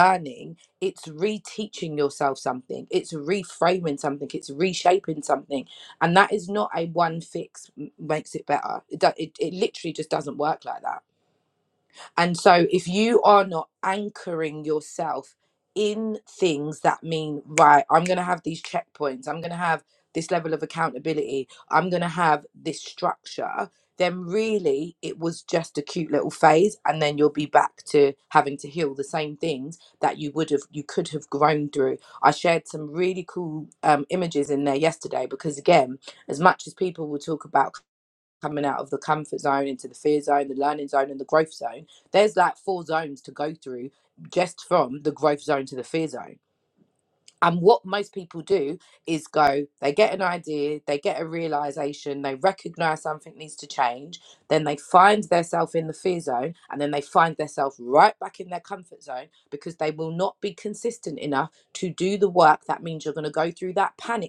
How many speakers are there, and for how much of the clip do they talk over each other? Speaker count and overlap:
one, no overlap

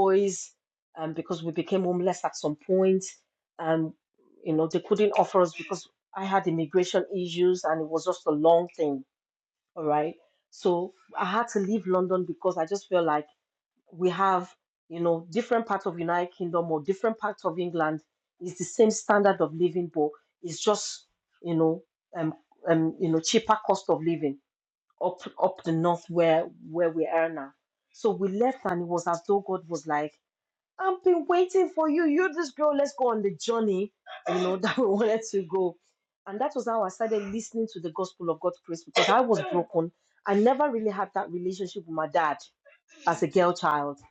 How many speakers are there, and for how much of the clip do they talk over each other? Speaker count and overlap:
one, no overlap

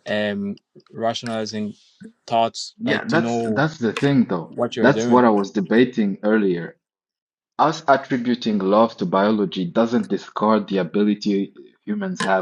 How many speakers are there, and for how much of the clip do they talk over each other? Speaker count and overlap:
two, about 11%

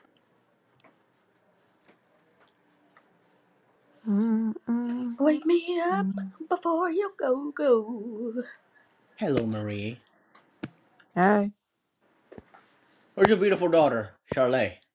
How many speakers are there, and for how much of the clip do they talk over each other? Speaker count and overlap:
three, no overlap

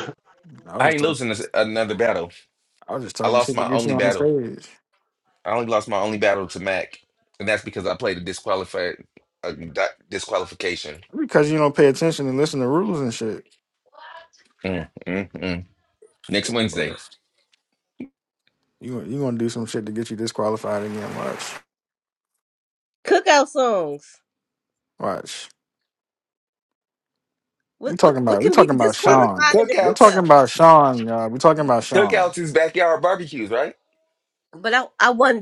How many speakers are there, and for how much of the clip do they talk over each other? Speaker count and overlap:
three, about 12%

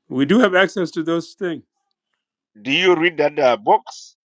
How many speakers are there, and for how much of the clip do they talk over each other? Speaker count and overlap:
two, no overlap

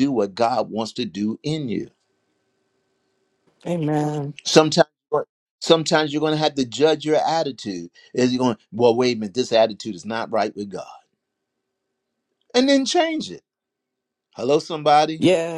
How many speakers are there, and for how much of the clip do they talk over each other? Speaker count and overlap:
two, no overlap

